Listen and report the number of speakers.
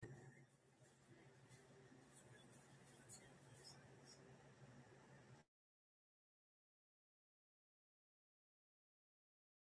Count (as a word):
zero